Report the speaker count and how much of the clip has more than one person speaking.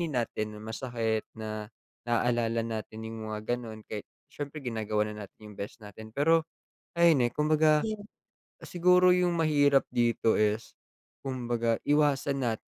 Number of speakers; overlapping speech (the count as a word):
one, no overlap